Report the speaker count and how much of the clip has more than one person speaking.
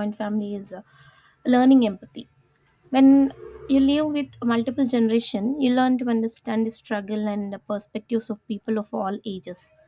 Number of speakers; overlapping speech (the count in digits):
1, no overlap